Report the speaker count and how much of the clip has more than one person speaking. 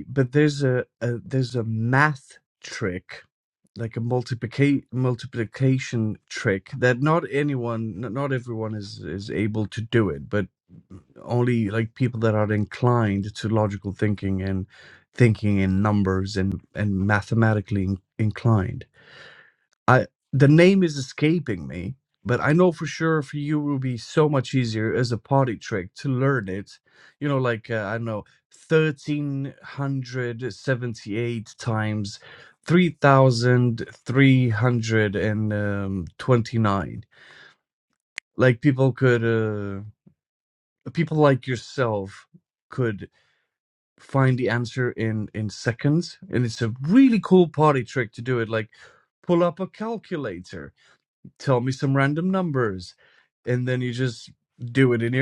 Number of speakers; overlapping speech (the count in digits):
1, no overlap